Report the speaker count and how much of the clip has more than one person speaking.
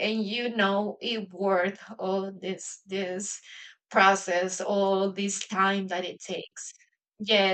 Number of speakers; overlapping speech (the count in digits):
1, no overlap